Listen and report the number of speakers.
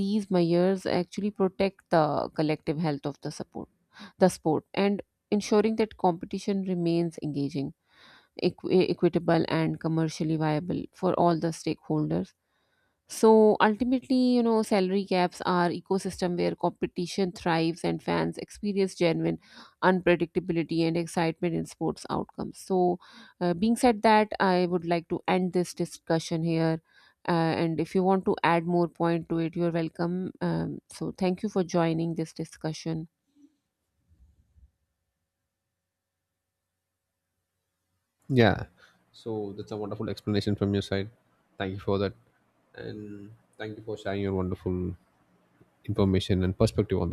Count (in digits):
2